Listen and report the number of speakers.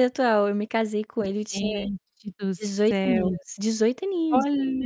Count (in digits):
2